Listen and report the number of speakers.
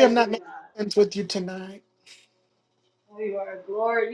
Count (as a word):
two